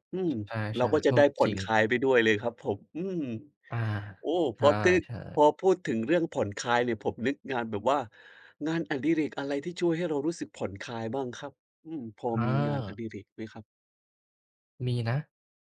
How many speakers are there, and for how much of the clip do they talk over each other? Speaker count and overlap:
2, about 6%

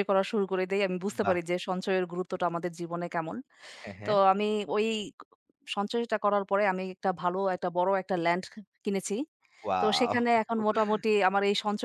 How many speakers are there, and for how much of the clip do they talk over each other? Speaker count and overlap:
2, about 6%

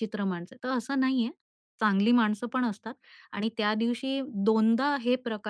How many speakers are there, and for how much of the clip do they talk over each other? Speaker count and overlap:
1, no overlap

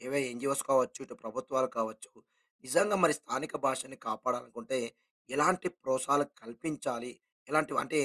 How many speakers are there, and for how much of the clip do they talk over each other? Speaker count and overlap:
1, no overlap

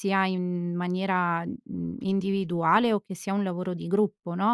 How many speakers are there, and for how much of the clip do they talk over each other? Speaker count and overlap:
1, no overlap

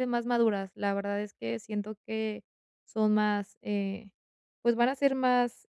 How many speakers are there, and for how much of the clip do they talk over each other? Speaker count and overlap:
1, no overlap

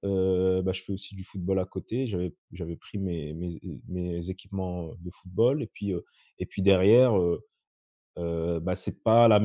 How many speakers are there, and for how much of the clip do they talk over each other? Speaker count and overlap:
1, no overlap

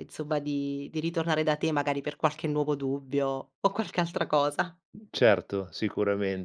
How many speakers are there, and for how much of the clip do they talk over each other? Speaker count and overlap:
2, no overlap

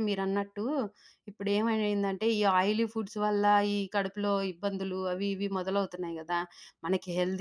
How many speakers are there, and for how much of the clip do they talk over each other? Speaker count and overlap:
1, no overlap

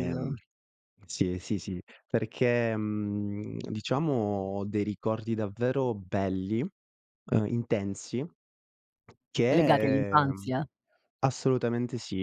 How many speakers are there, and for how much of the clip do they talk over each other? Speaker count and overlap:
2, about 8%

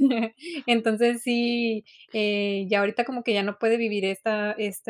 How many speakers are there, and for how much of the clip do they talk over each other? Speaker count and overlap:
1, no overlap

